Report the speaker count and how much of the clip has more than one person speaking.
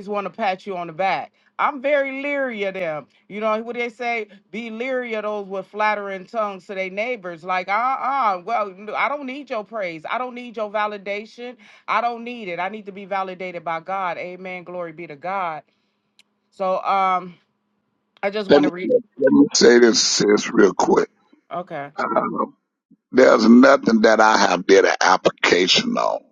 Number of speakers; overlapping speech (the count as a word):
two, about 2%